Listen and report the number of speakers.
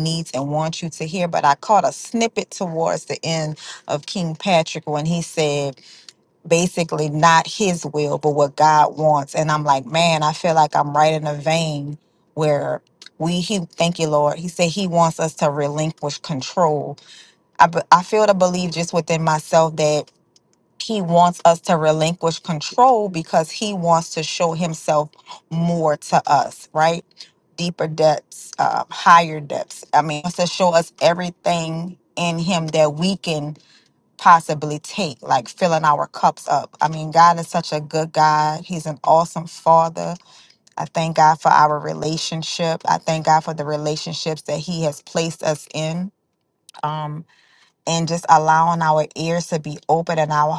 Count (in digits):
1